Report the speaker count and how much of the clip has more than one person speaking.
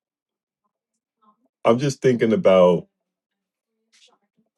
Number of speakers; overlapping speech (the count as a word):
one, no overlap